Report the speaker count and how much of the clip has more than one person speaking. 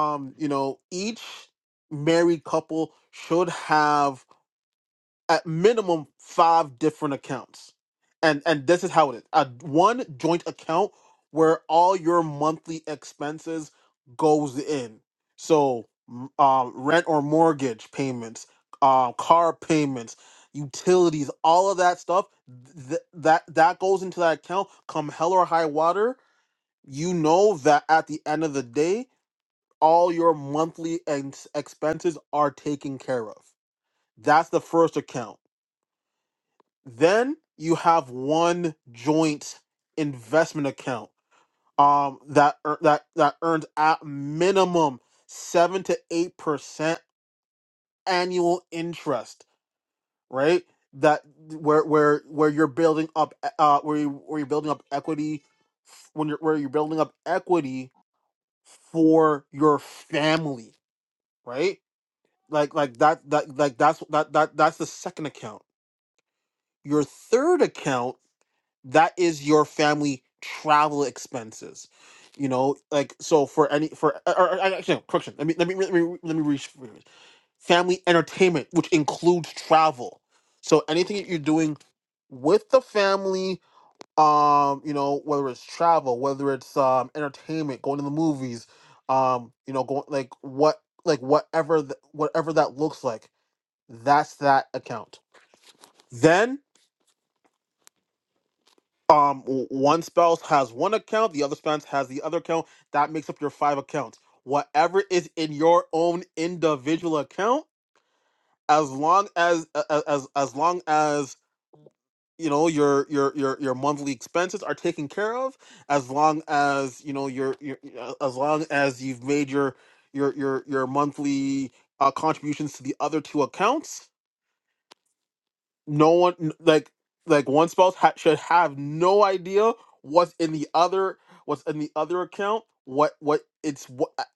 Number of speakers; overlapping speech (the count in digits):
1, no overlap